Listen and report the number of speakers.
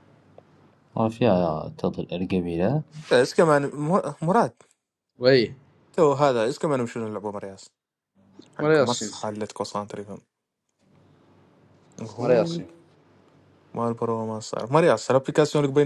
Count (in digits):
3